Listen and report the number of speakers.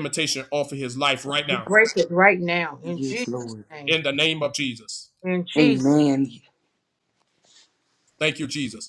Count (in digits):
3